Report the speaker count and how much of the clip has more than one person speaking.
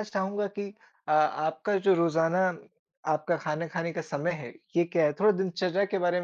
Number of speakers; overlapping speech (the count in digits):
1, no overlap